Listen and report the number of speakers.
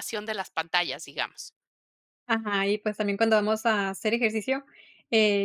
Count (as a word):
two